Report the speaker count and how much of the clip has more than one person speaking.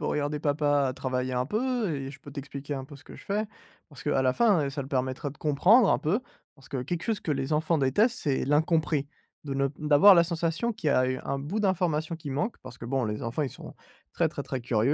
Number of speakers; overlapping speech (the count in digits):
1, no overlap